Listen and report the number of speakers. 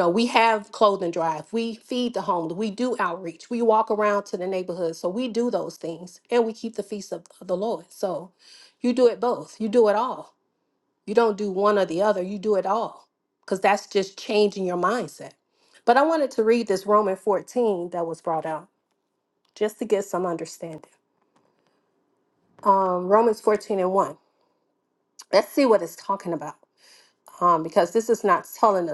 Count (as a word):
one